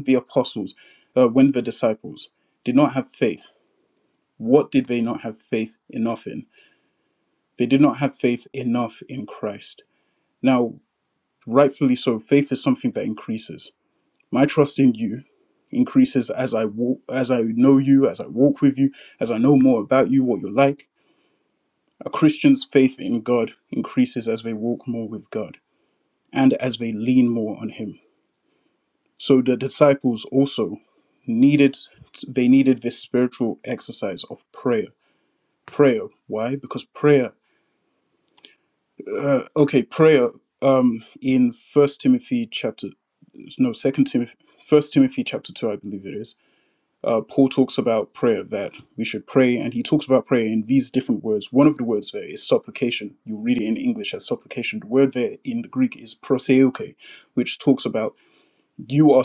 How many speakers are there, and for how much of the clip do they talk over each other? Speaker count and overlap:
one, no overlap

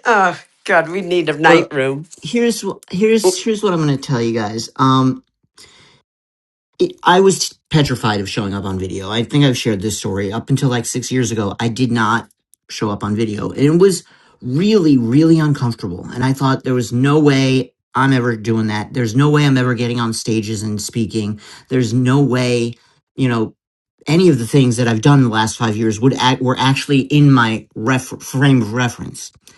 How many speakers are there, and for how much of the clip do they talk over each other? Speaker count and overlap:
two, about 1%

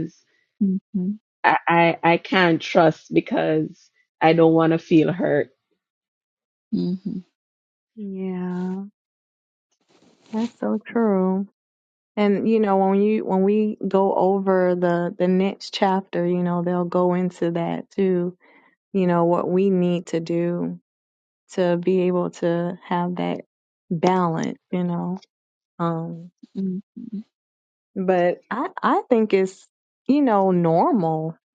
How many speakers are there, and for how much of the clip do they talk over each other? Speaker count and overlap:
three, no overlap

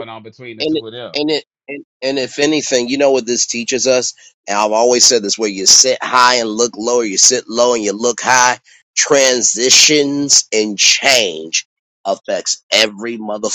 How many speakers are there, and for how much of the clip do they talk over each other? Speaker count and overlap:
two, about 4%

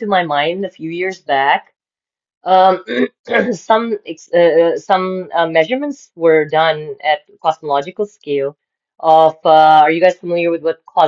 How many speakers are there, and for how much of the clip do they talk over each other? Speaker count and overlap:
one, no overlap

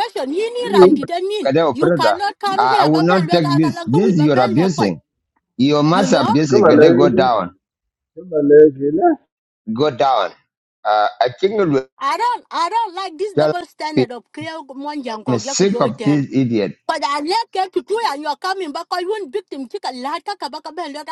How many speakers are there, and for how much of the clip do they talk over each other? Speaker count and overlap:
three, about 27%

